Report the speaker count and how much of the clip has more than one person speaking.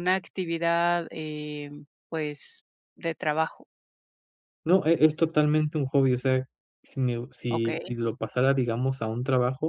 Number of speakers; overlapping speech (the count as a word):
two, about 4%